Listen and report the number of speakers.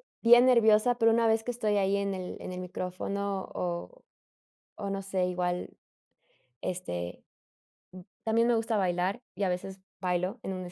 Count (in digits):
1